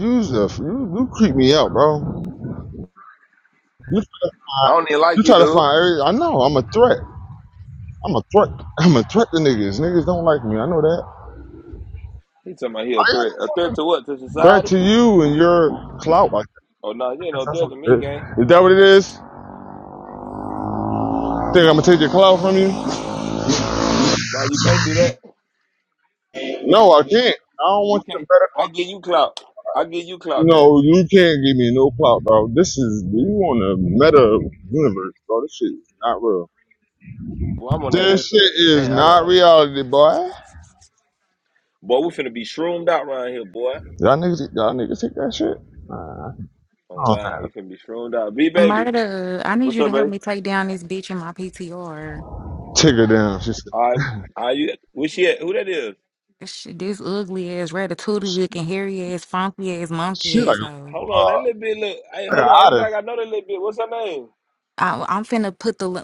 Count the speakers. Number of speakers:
three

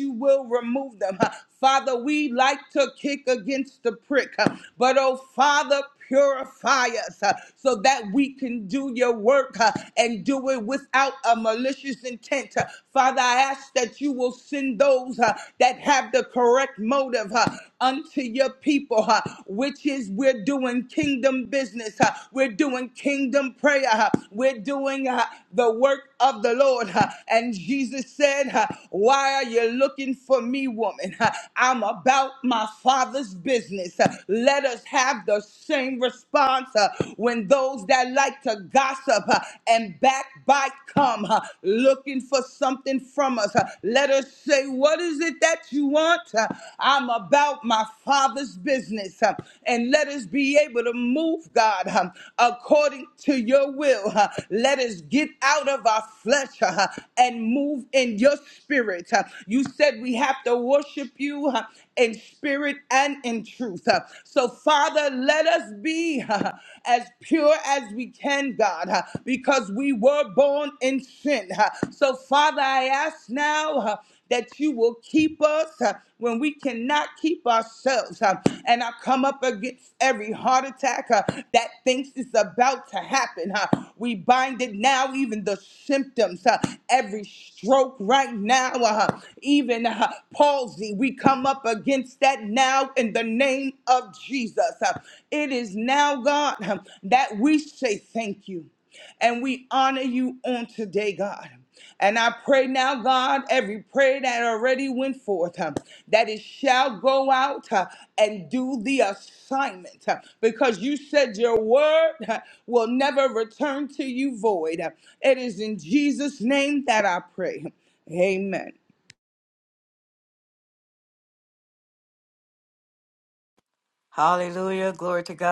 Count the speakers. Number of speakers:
two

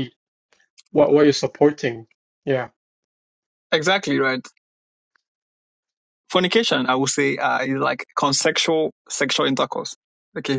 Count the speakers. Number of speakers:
two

